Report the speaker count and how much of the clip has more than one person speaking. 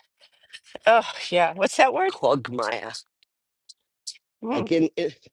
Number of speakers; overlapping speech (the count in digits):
2, about 3%